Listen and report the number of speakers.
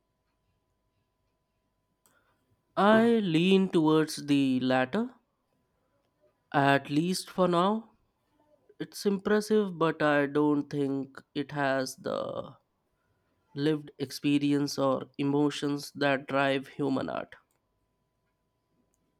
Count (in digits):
1